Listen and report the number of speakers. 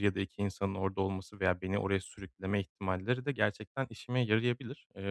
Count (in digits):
1